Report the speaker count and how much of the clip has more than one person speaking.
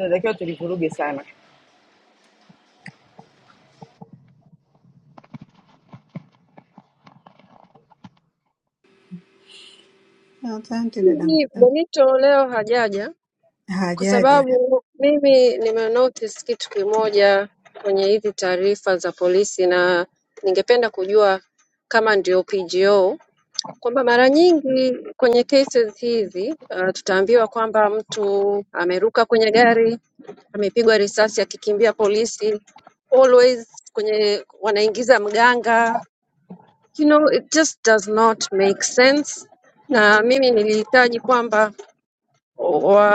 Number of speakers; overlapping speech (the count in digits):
3, about 3%